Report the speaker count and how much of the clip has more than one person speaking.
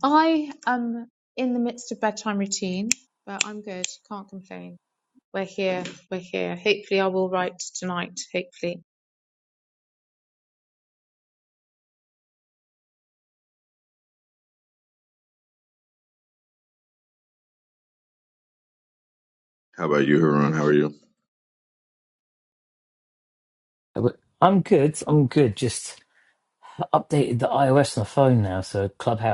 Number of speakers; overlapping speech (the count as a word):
three, no overlap